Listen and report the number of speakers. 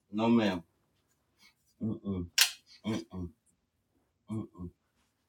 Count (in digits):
1